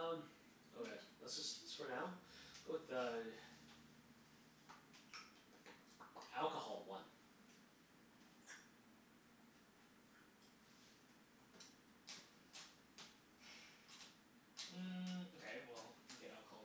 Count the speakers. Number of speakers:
two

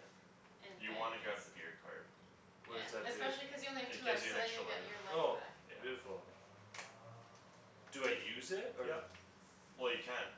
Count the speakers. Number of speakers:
three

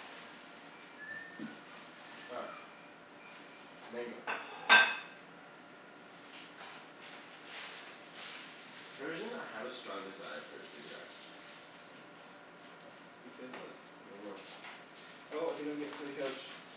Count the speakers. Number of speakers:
two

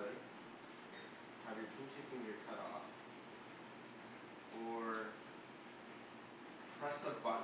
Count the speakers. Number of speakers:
one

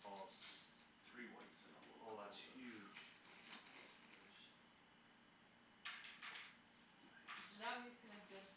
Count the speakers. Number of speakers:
three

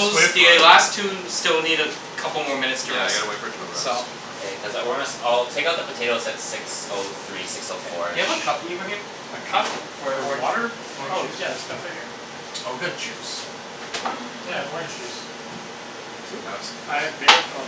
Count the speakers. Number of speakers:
four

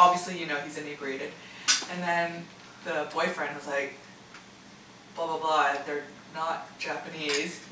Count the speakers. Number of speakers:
one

